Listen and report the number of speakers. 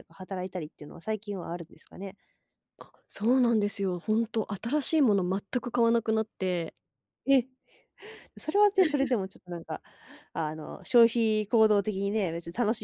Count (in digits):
2